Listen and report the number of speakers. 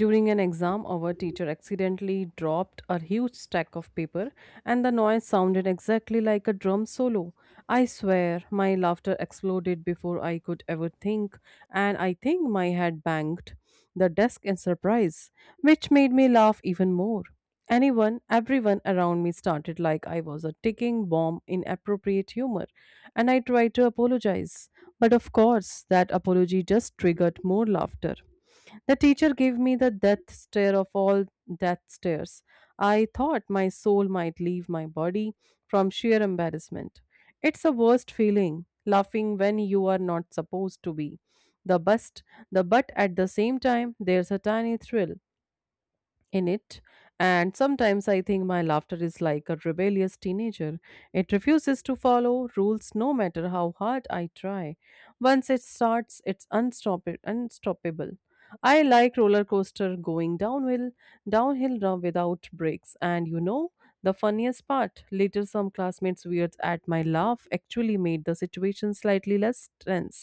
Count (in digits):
1